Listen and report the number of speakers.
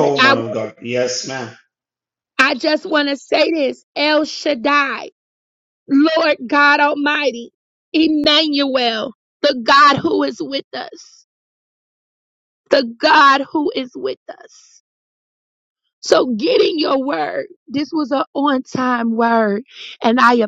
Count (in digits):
2